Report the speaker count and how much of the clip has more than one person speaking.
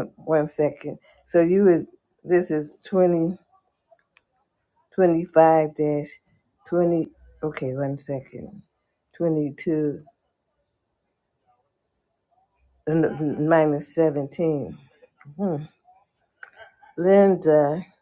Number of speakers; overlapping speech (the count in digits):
1, no overlap